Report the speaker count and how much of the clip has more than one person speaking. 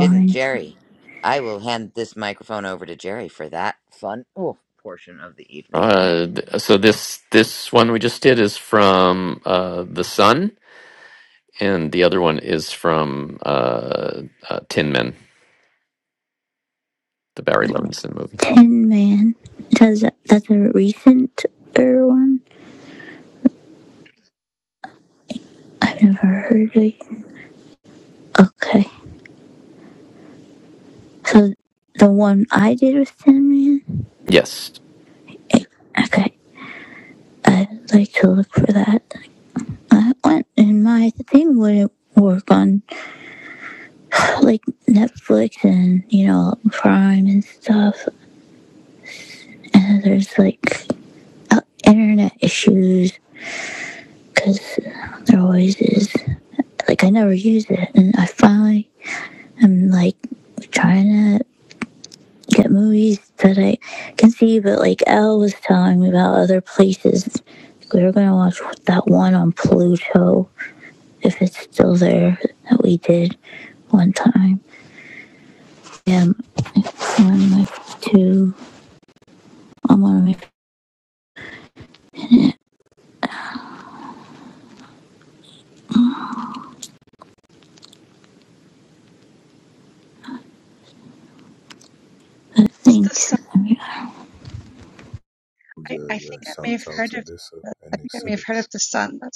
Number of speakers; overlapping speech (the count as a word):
five, about 3%